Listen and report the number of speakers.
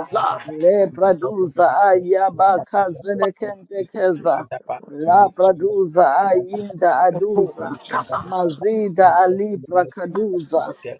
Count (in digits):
3